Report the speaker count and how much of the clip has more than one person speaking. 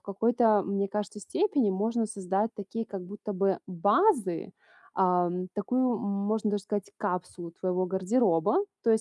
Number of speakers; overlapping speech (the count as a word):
one, no overlap